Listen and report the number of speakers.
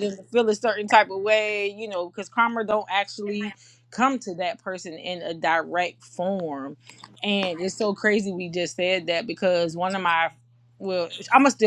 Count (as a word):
one